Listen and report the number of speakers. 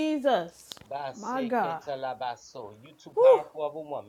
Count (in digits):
2